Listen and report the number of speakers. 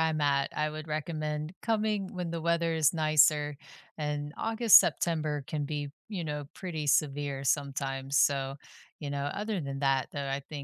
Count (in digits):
1